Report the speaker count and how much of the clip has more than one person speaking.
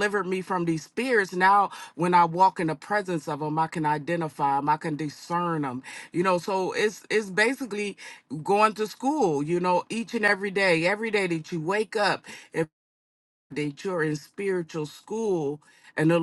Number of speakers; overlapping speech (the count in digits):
1, no overlap